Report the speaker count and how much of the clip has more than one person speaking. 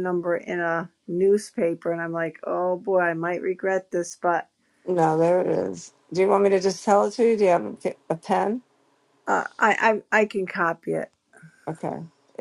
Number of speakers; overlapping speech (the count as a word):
two, no overlap